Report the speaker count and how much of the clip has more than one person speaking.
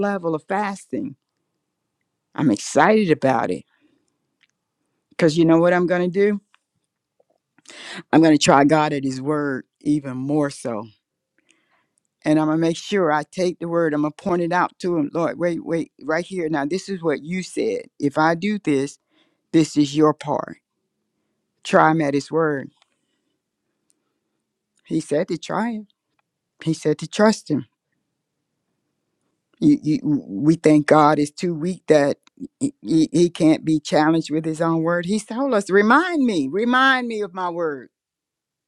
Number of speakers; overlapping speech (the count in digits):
1, no overlap